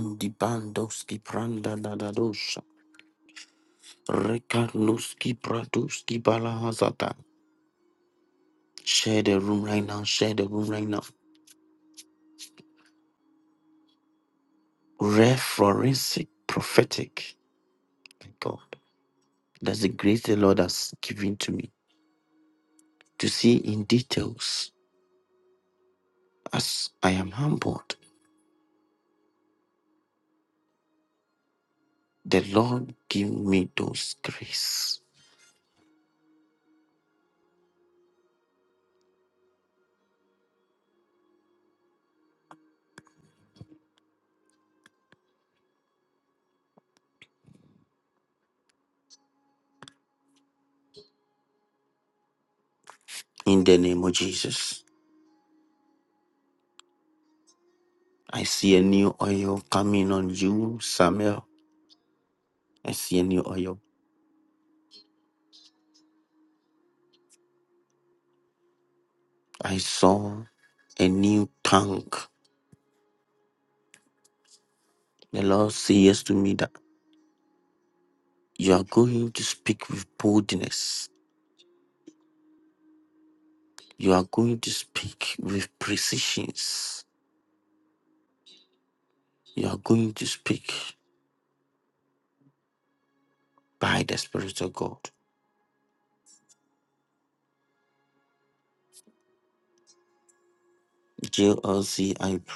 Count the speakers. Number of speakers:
1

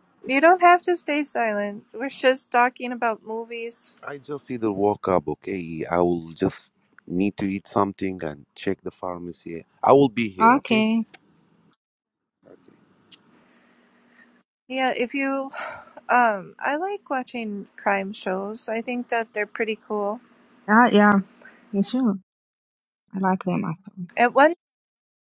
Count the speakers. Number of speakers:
3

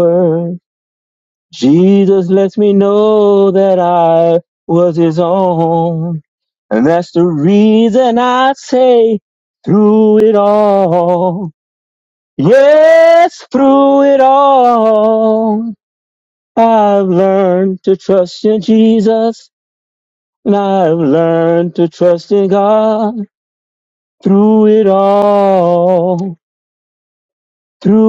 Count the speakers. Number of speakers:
1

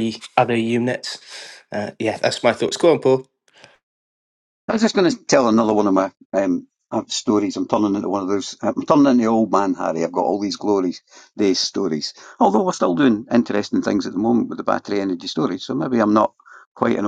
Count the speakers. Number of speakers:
2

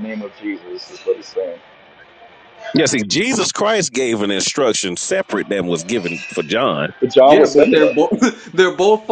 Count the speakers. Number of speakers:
3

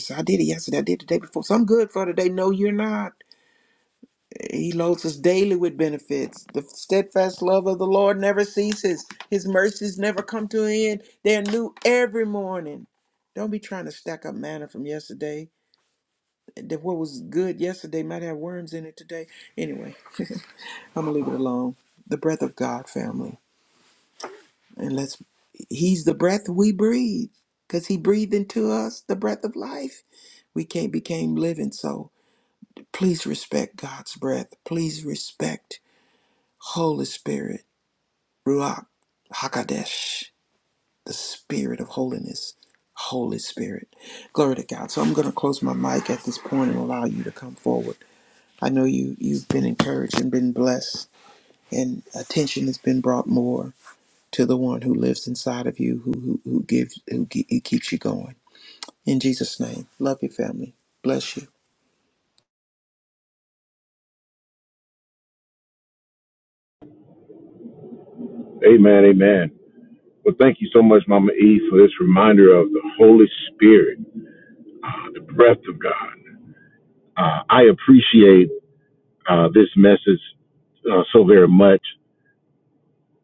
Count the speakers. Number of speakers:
2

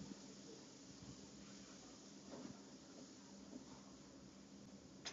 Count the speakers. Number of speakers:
0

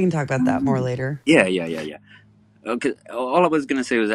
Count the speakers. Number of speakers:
2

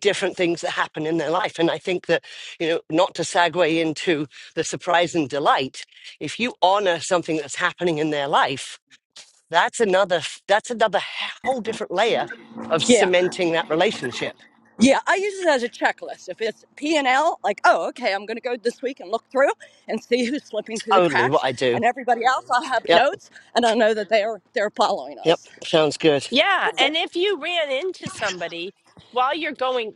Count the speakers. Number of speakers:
3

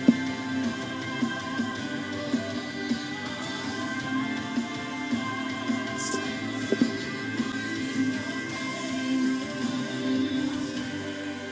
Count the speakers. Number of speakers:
0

